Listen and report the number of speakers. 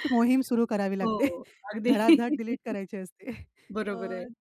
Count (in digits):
2